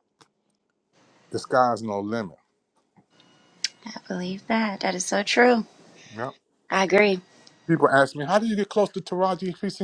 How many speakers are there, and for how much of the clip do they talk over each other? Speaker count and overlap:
2, no overlap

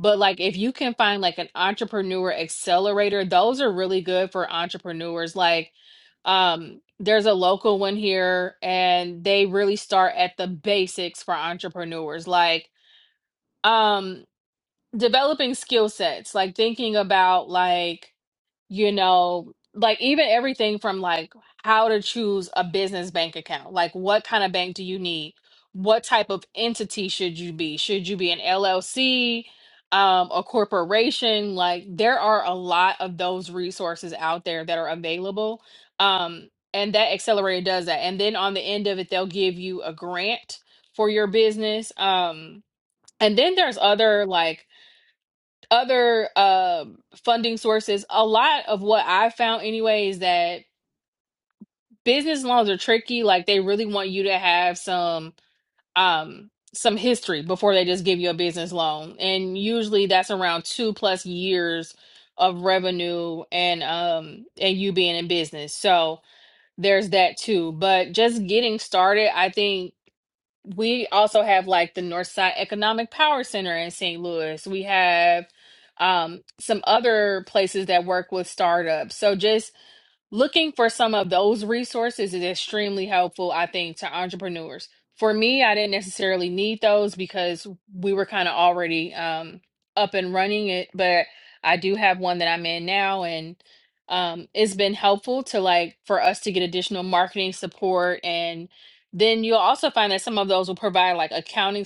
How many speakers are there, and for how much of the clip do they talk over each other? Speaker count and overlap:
1, no overlap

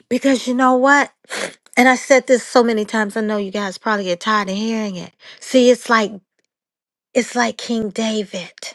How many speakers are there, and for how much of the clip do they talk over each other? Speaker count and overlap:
1, no overlap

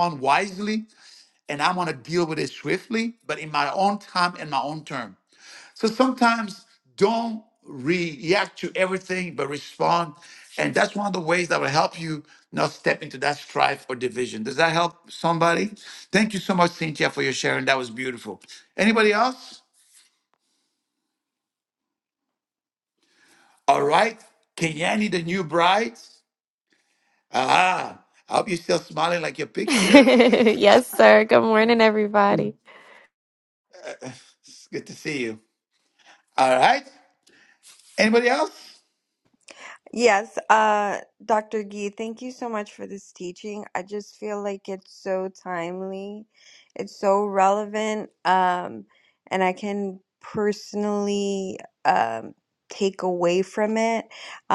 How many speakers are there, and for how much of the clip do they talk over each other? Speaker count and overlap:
3, about 1%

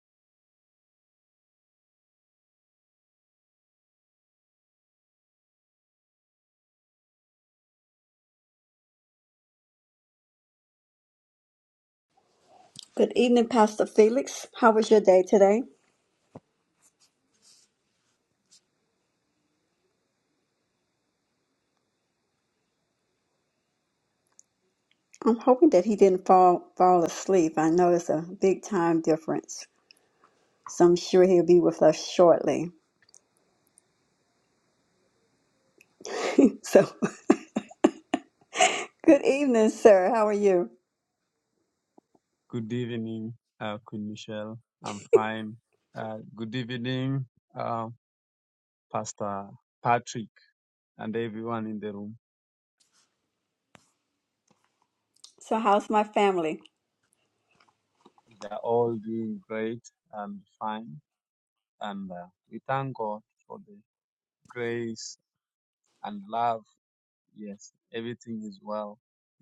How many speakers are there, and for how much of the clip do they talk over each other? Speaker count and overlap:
2, no overlap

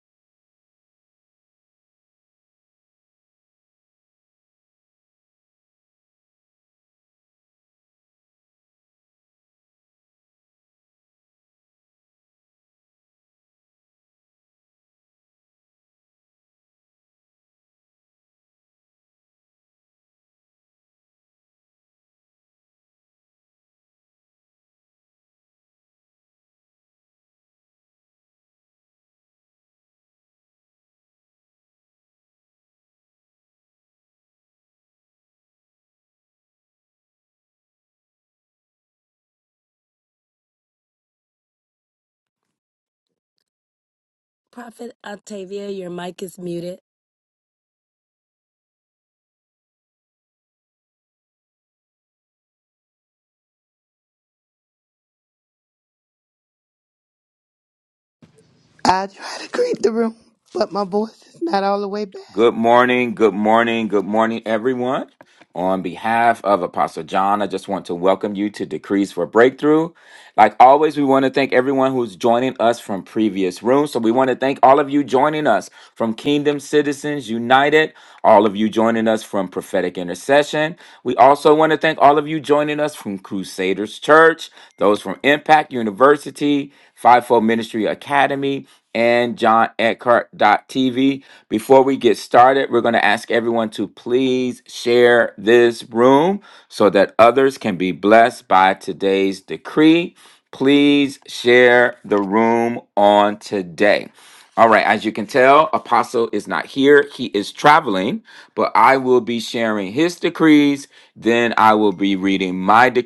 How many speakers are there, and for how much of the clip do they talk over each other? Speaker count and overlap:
3, no overlap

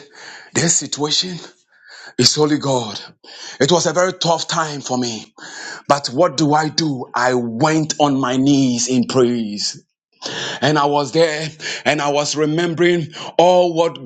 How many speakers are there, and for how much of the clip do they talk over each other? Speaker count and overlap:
1, no overlap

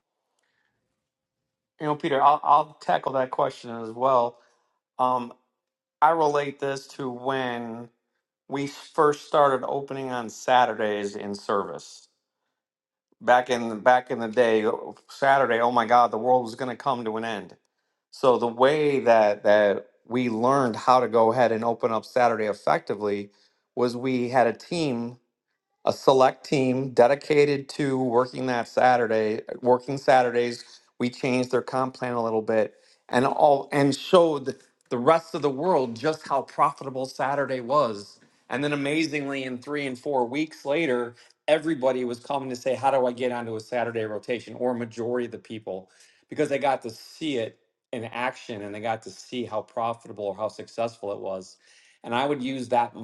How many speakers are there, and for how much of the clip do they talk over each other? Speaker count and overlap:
1, no overlap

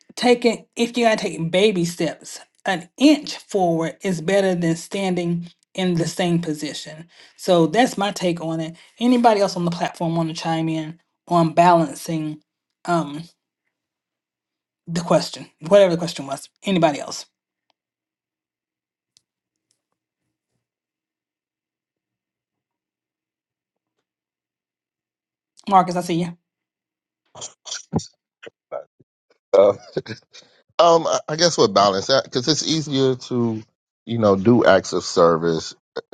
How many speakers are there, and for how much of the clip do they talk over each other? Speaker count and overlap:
2, no overlap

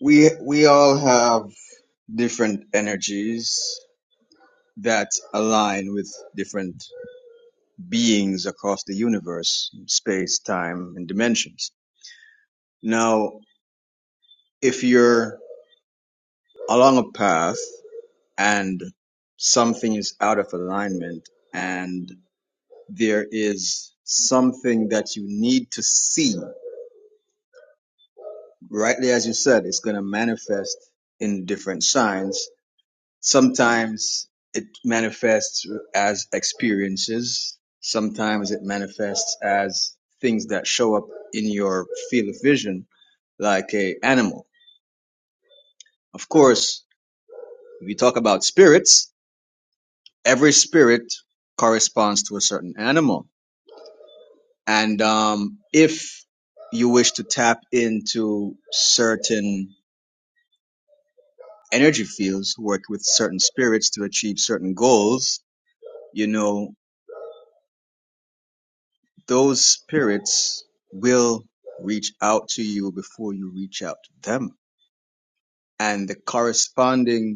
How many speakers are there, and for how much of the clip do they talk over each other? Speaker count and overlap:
1, no overlap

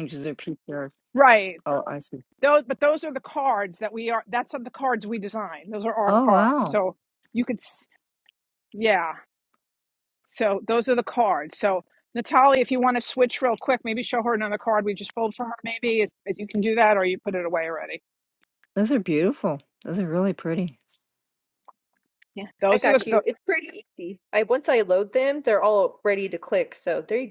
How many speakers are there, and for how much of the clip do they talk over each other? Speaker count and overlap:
3, about 4%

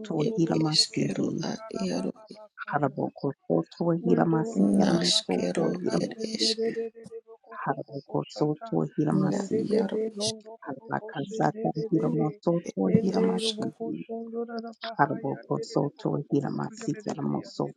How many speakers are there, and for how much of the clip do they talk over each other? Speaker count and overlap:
3, about 62%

